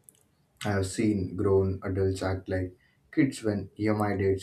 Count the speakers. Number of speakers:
one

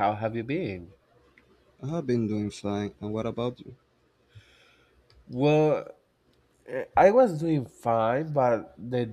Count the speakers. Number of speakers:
two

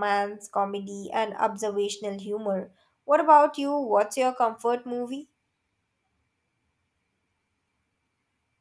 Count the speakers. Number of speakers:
one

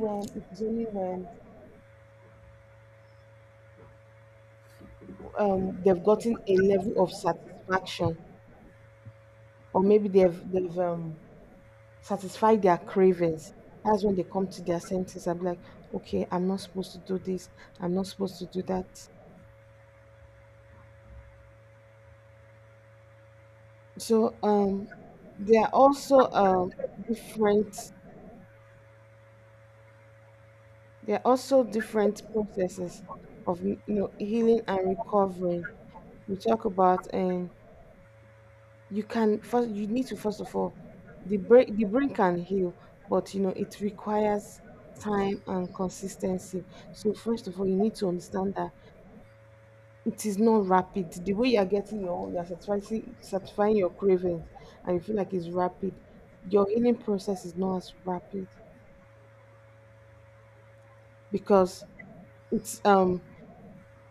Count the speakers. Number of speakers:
one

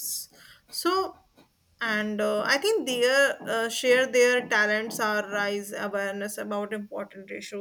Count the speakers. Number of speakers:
one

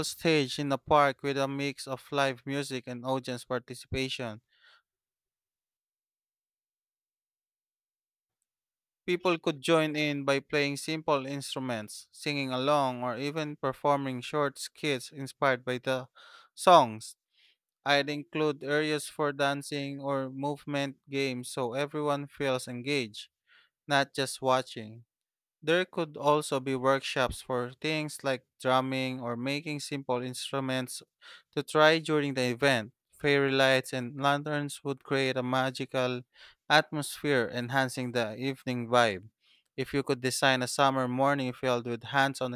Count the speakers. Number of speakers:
one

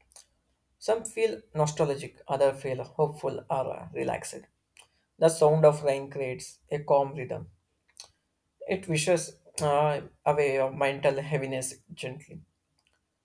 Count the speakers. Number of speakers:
one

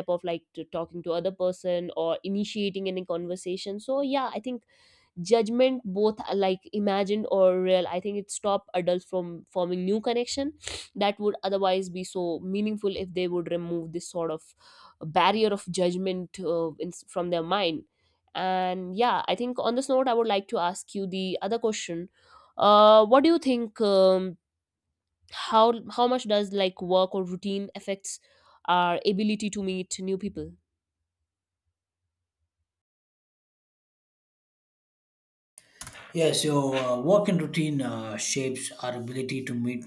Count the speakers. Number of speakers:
two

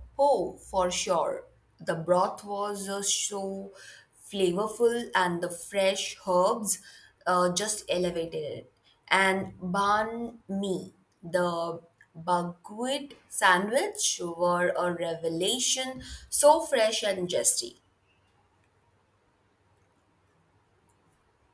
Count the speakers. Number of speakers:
one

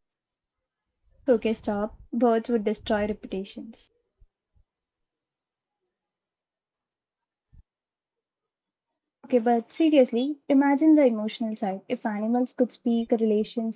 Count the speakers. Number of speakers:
one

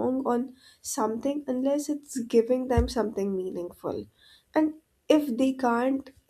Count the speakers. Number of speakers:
one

